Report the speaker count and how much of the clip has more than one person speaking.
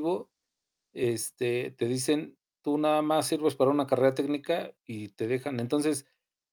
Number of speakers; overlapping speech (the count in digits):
1, no overlap